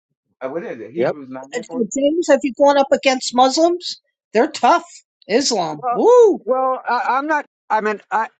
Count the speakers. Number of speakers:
3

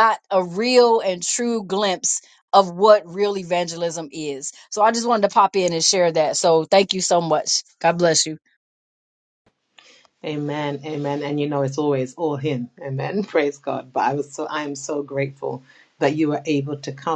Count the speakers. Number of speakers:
2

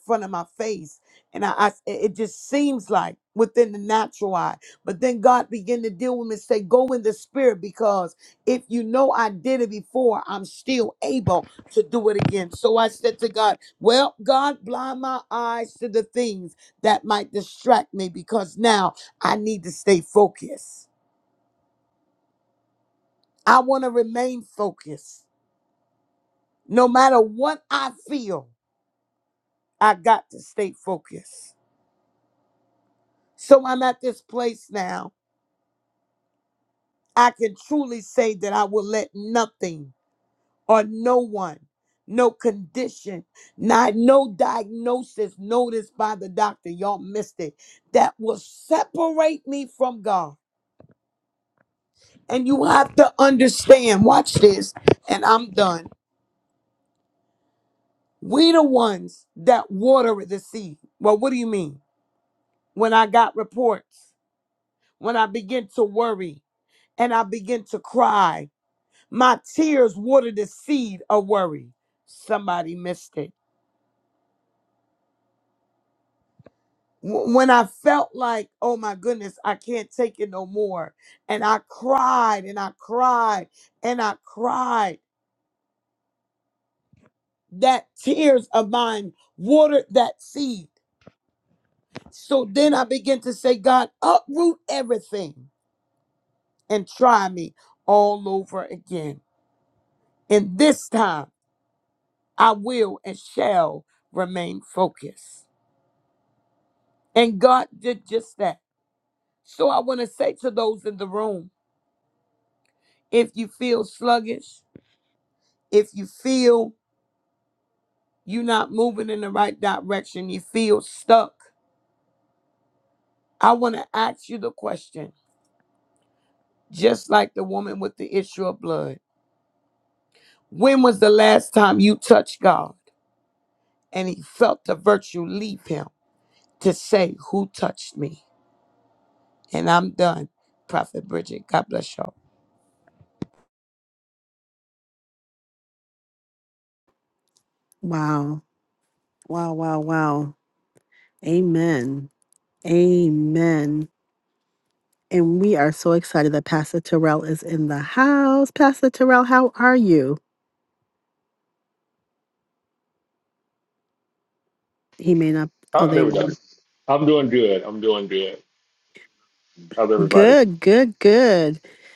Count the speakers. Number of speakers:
3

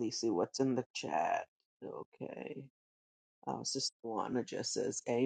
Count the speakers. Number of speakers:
1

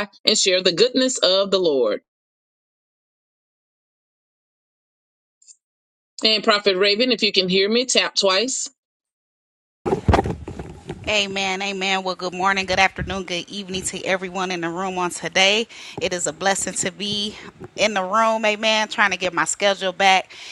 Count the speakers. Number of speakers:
2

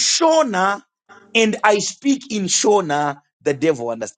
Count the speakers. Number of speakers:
1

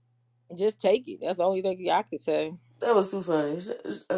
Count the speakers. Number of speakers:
2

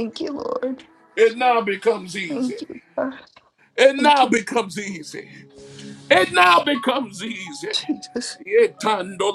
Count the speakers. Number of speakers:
2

